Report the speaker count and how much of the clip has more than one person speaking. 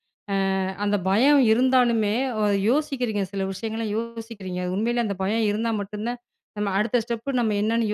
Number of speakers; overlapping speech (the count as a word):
one, no overlap